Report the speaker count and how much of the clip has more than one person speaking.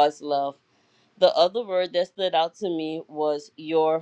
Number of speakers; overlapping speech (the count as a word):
one, no overlap